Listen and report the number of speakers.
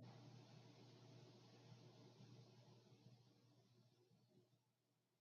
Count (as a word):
zero